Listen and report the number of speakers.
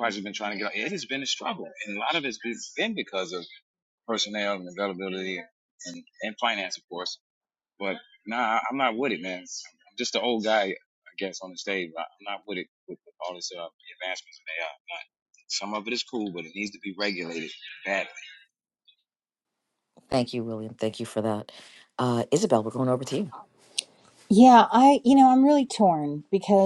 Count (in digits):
3